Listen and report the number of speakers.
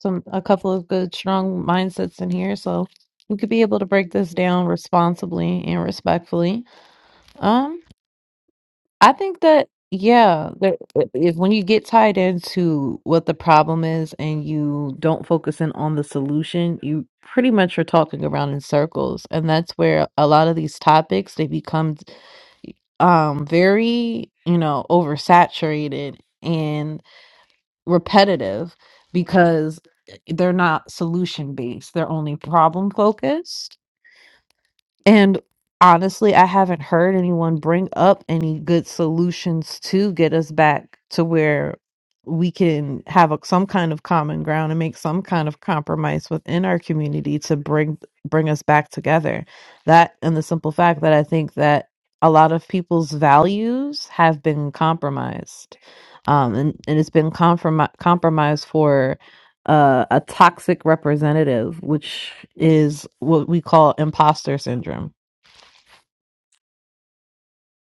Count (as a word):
one